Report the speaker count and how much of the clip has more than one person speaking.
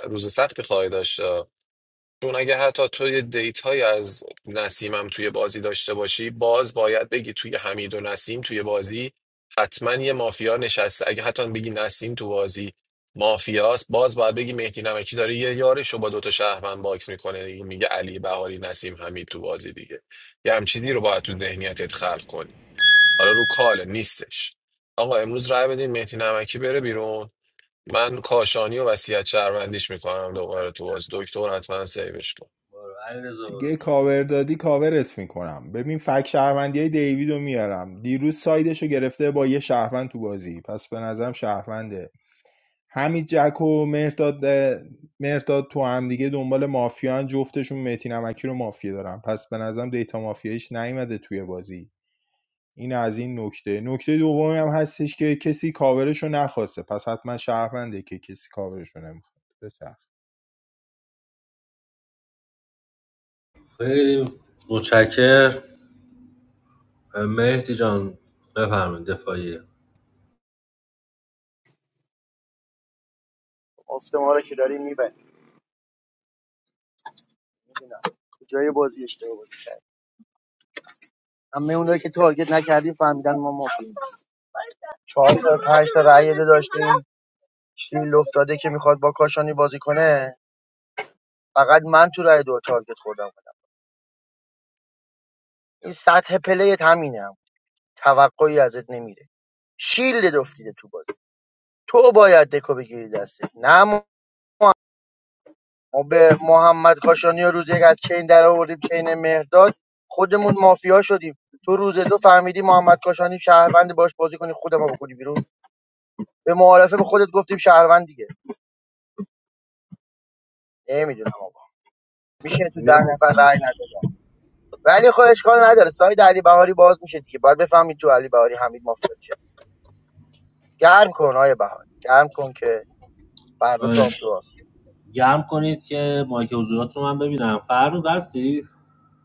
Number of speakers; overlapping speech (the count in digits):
4, about 1%